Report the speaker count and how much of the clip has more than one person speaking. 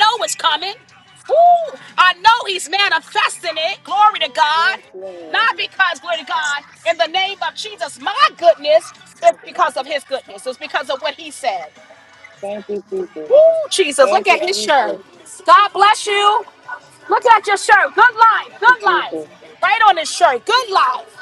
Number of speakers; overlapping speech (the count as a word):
two, about 10%